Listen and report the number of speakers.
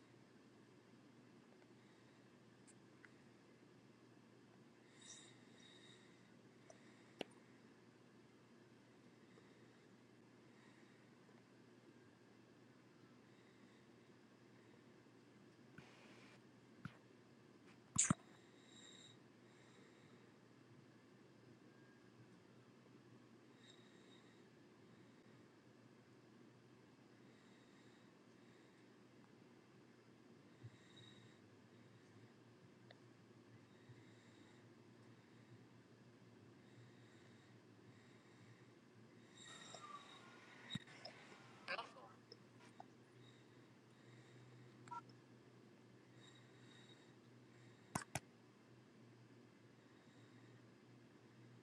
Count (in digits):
0